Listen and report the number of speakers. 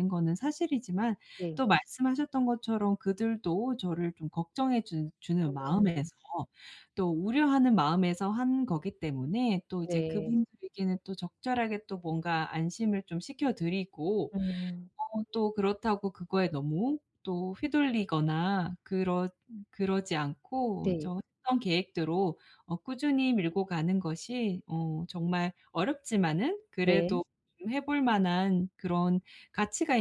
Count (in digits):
2